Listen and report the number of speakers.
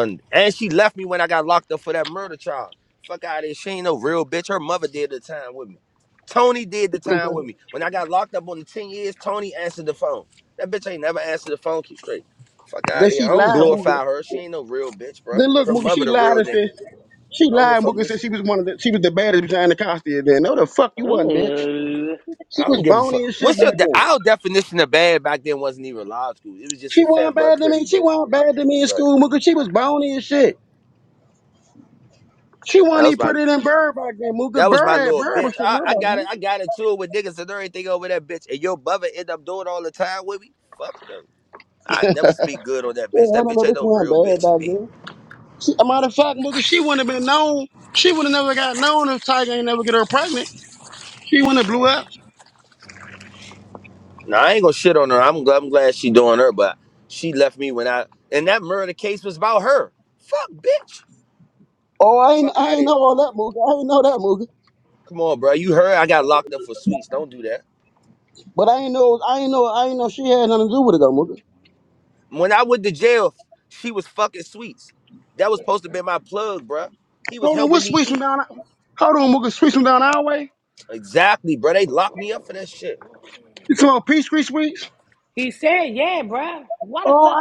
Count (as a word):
three